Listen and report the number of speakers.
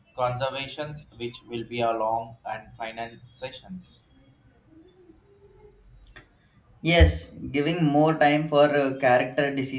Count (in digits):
2